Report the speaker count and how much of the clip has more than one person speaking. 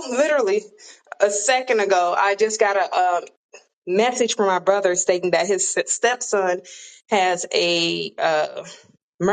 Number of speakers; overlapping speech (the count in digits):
1, no overlap